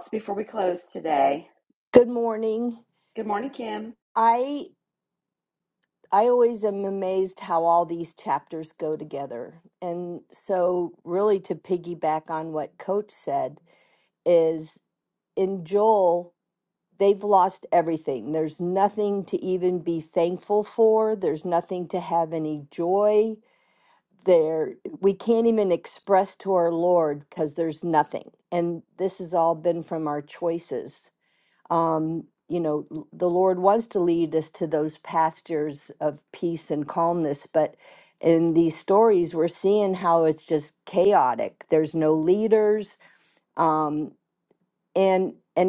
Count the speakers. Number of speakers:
2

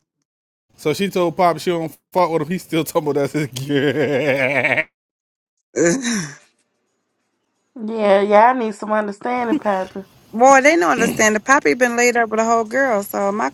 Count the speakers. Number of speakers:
3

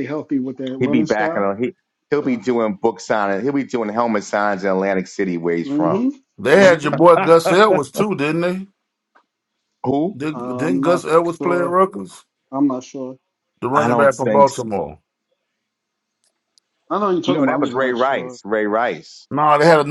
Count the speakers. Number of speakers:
3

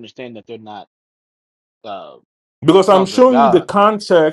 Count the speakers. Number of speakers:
2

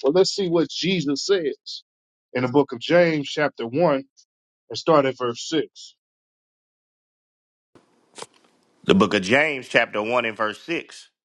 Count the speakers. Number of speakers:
2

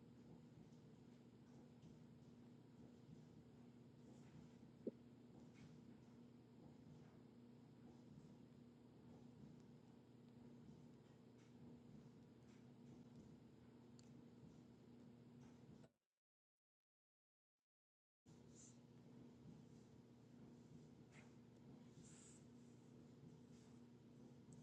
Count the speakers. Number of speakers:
0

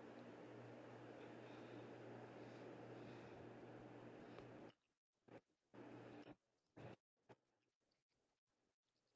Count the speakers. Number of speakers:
0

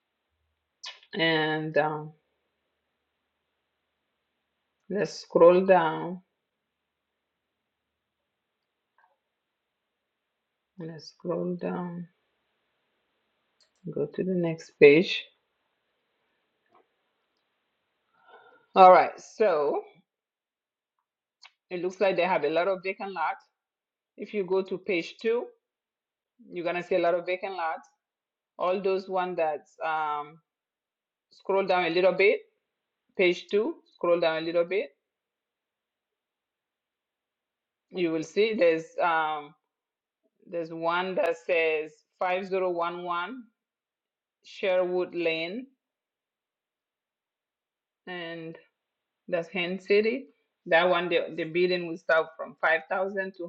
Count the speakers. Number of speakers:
1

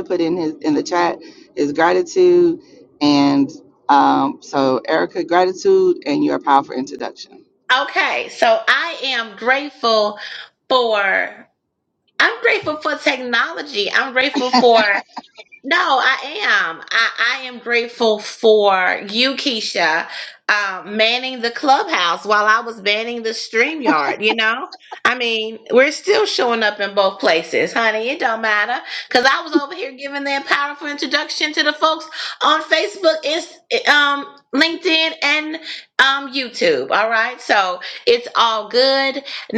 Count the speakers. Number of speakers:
2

